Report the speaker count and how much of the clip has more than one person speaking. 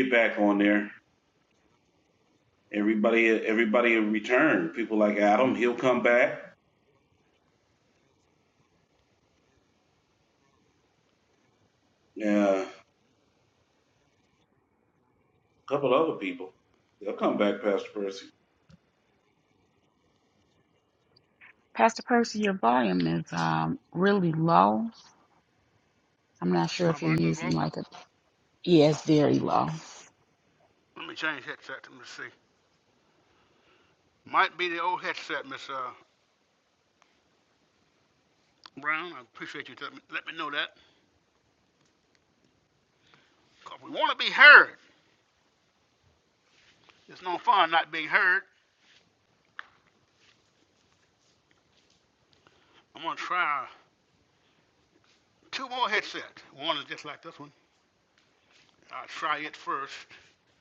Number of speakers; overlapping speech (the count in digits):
3, about 1%